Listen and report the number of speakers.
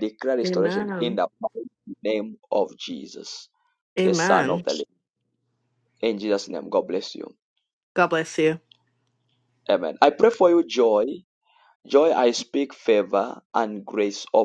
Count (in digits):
2